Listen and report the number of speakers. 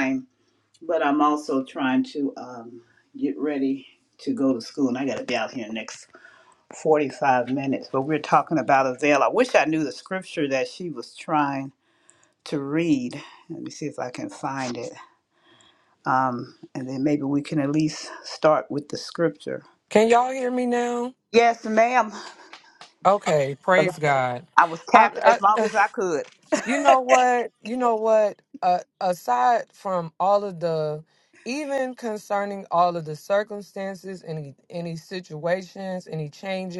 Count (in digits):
2